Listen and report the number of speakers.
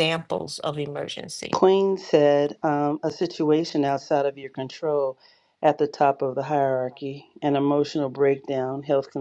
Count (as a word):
two